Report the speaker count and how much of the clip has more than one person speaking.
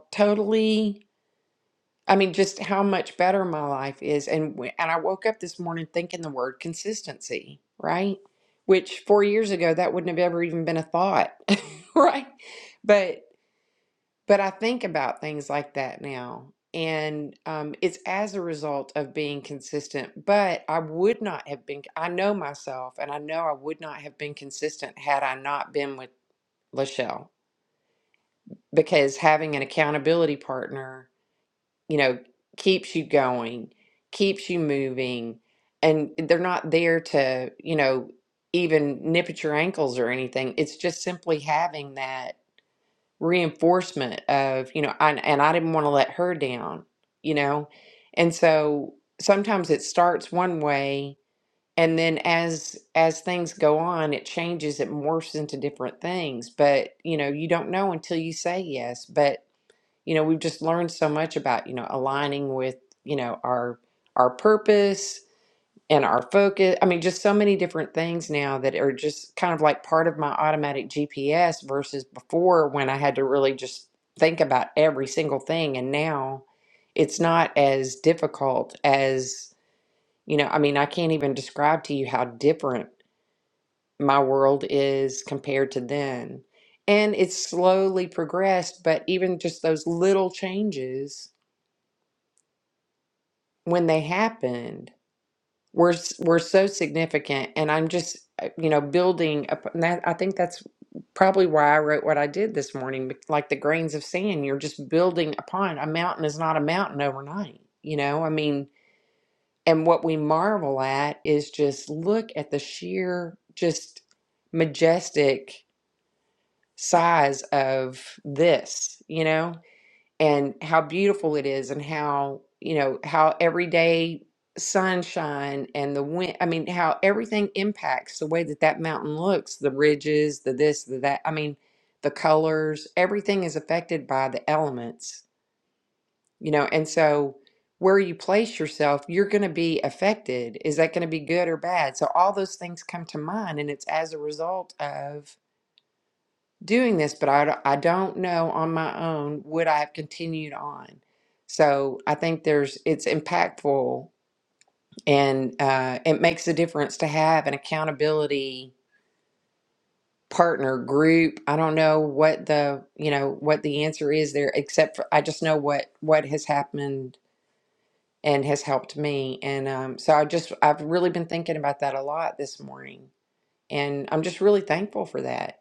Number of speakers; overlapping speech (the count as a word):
one, no overlap